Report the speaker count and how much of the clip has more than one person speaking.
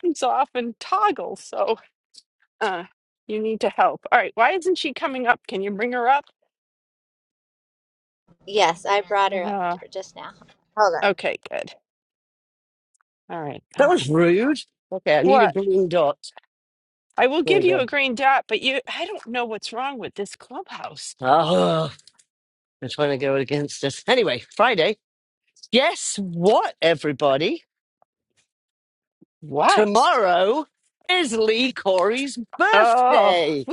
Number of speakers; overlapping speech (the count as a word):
three, about 8%